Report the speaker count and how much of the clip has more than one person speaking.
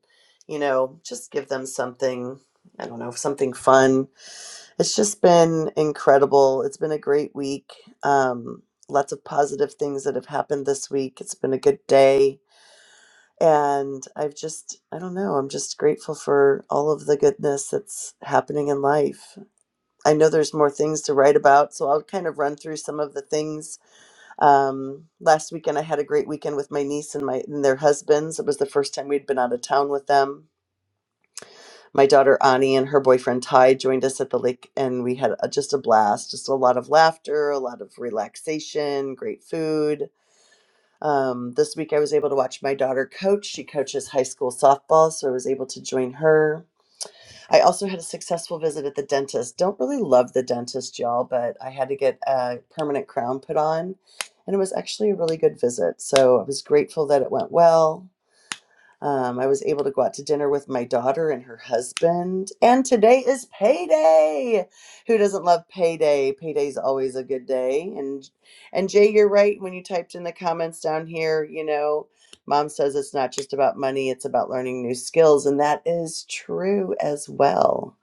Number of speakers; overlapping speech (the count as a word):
one, no overlap